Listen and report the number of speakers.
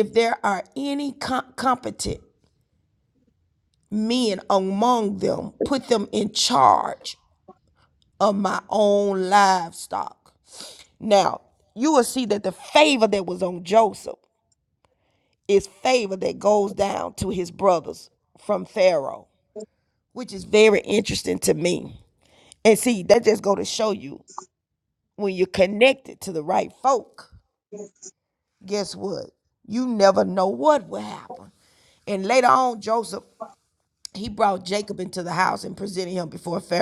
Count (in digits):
1